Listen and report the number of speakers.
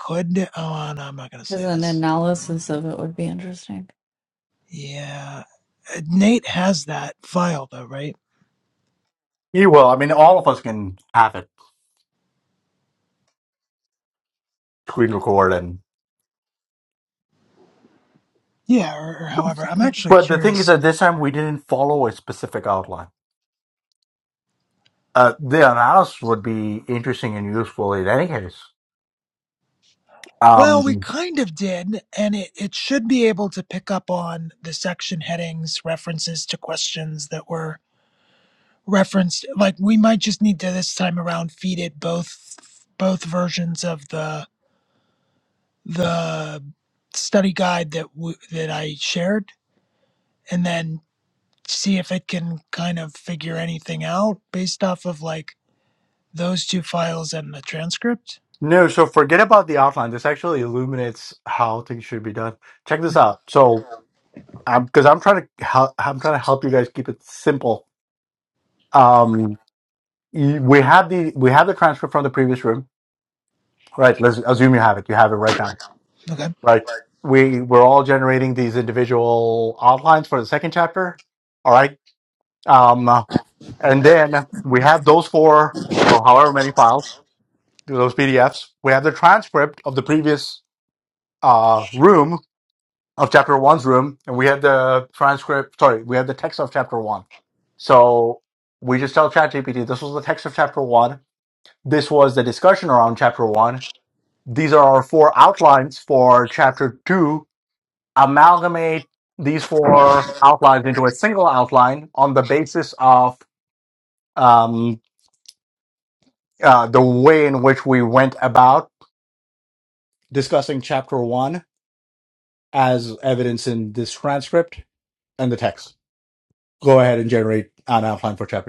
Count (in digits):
3